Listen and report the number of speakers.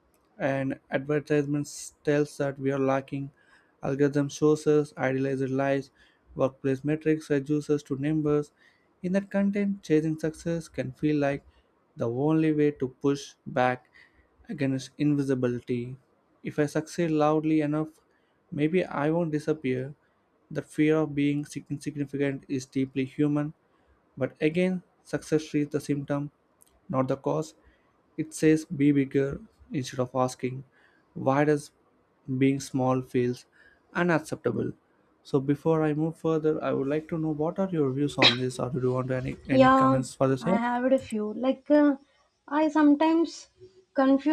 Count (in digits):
2